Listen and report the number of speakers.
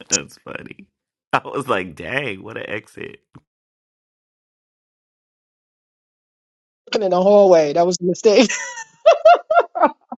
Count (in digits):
2